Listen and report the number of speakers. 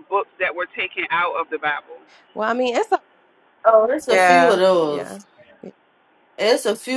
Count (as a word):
three